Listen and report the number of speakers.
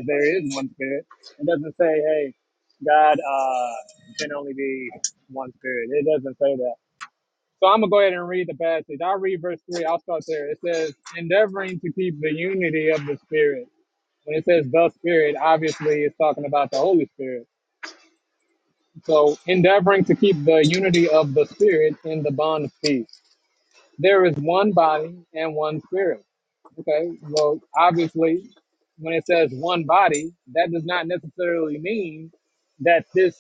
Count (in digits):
1